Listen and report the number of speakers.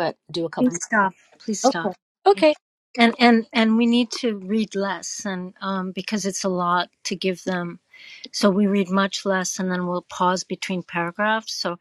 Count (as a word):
two